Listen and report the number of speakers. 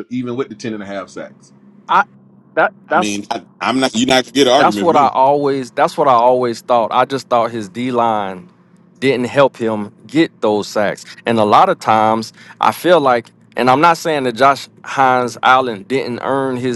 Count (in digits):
3